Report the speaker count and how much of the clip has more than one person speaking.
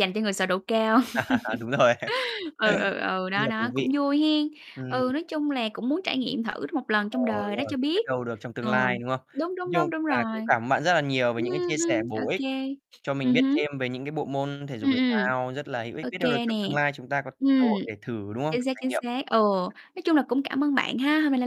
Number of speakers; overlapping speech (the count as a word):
two, about 28%